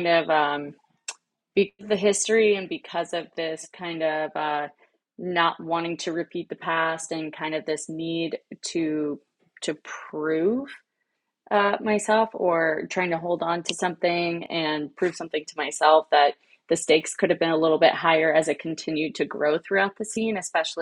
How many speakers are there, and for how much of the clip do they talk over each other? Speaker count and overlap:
one, no overlap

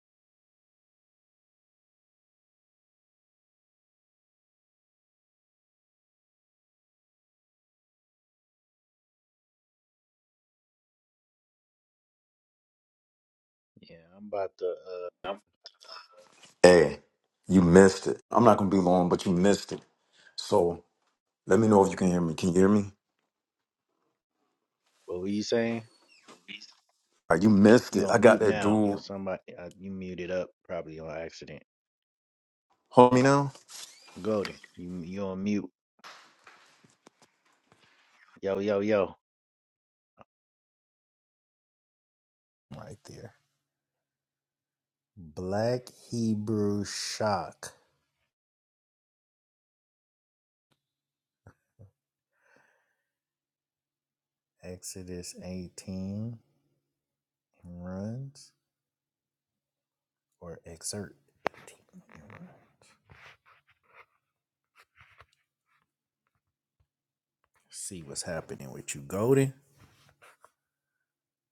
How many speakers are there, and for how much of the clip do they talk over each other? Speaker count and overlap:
two, about 2%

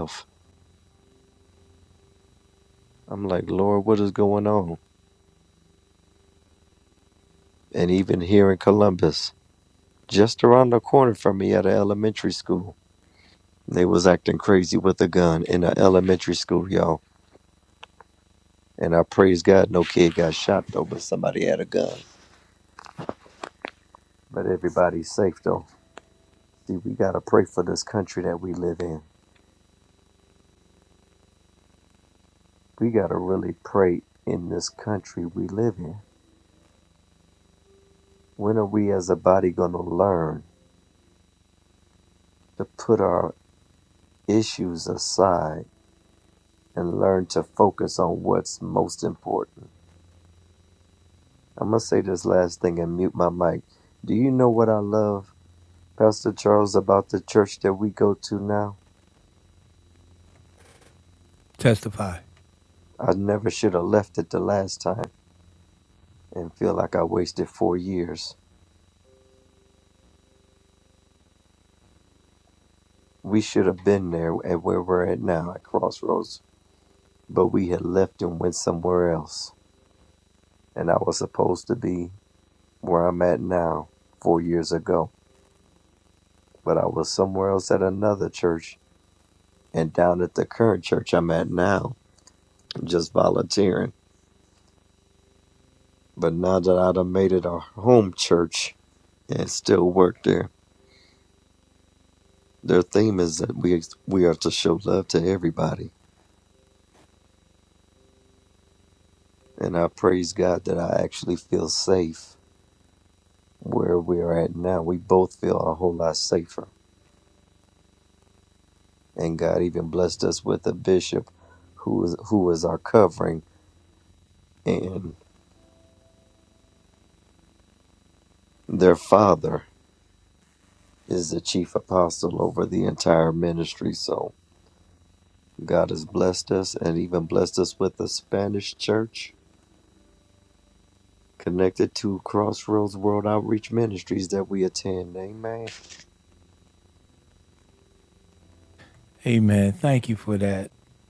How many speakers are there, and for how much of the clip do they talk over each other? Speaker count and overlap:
two, no overlap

